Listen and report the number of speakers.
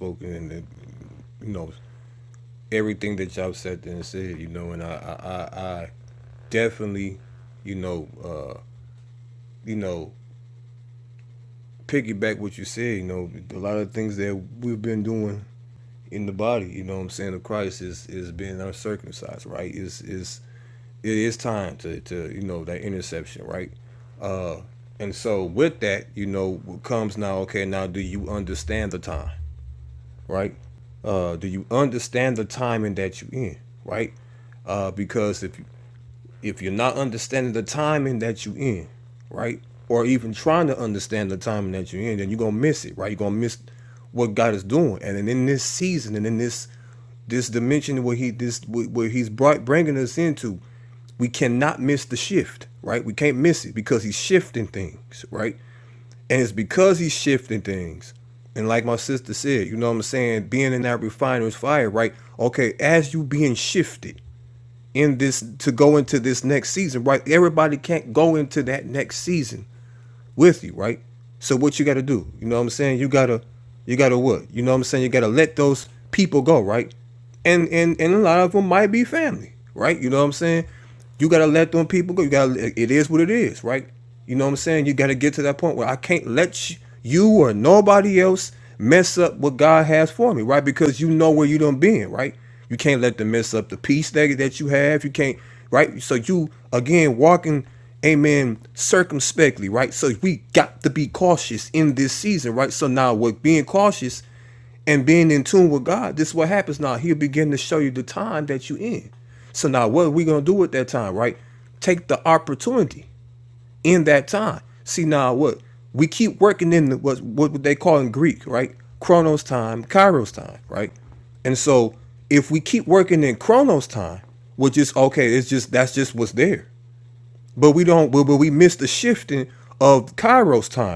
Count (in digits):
1